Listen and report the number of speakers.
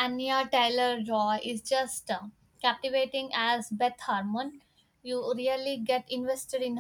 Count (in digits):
1